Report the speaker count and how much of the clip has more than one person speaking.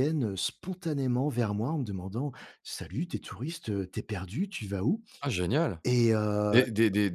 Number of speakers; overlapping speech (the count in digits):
2, about 3%